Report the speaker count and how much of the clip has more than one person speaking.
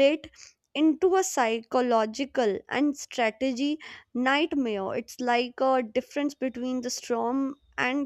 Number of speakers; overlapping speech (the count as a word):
one, no overlap